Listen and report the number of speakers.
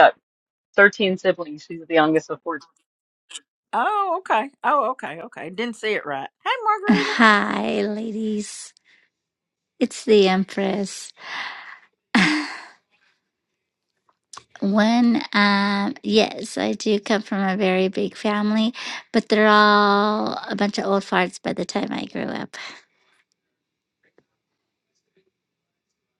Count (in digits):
3